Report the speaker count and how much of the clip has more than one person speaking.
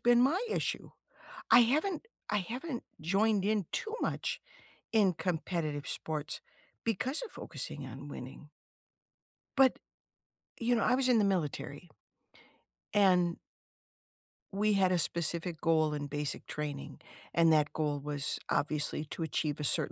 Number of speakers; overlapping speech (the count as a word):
one, no overlap